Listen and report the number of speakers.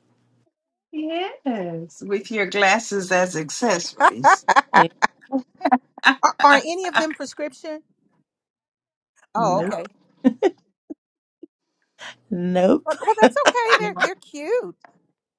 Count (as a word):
three